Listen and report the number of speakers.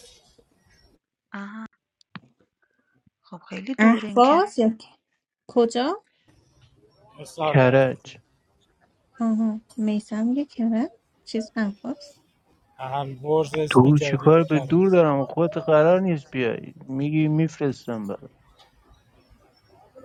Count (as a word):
four